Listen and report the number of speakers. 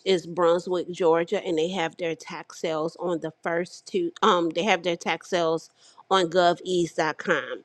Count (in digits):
1